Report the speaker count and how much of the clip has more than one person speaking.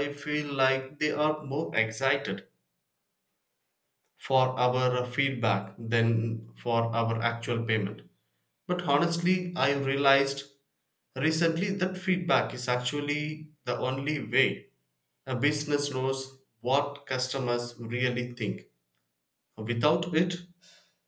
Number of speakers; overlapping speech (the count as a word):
one, no overlap